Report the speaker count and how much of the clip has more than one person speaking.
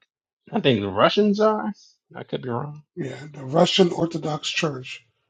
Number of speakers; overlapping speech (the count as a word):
two, no overlap